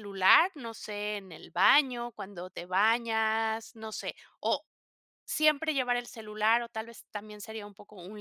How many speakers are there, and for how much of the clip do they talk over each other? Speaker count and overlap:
1, no overlap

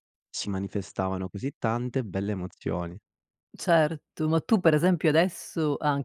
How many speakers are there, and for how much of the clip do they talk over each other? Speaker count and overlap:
2, no overlap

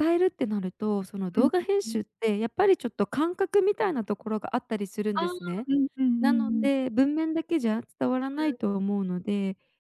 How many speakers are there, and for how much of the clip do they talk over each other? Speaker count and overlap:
2, about 13%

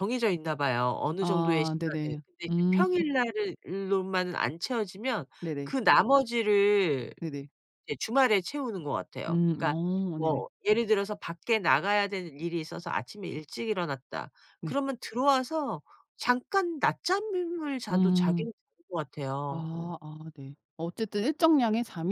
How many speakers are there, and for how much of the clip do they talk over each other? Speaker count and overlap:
2, about 13%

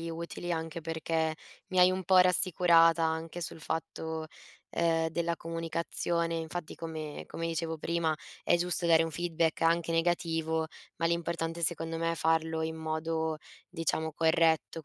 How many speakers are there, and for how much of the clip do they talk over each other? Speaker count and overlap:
1, no overlap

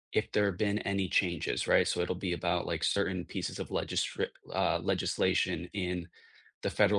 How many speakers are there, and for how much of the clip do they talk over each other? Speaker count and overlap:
1, no overlap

